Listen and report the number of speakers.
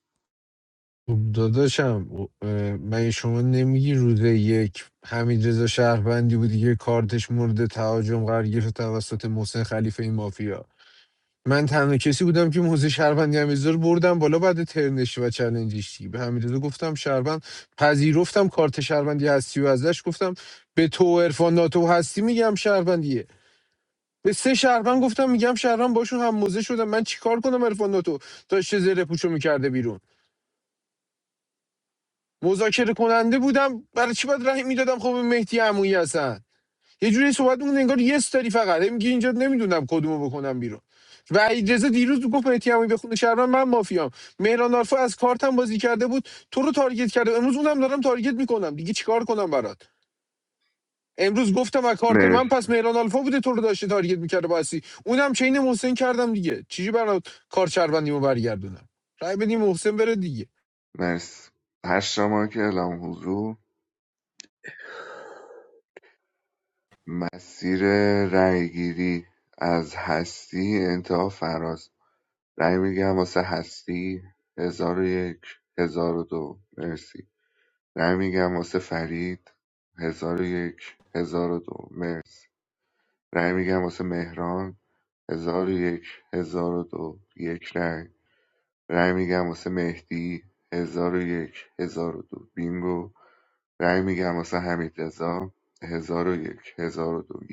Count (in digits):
2